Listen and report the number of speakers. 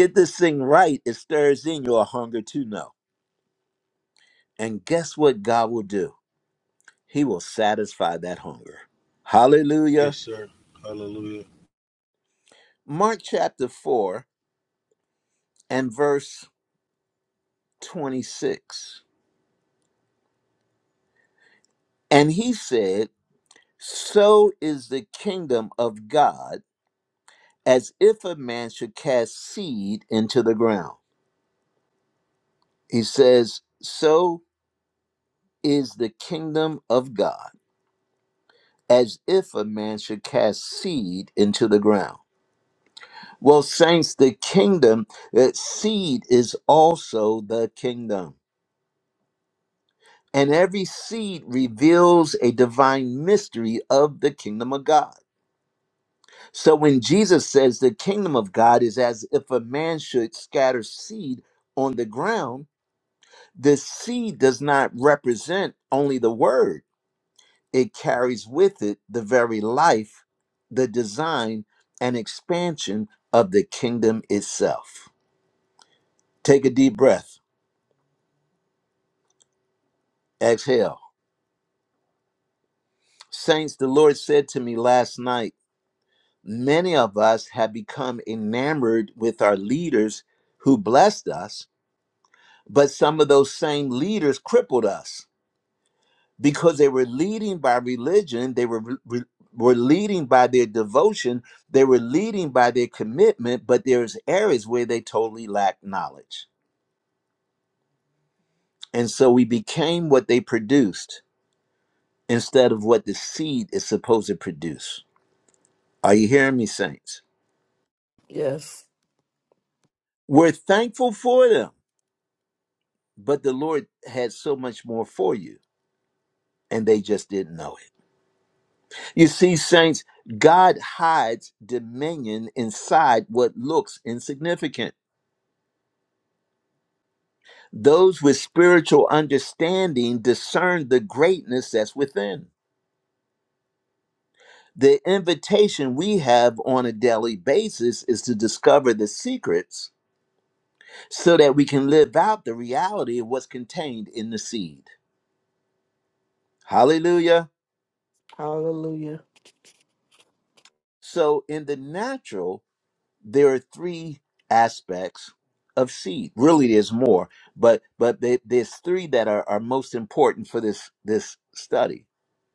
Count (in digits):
3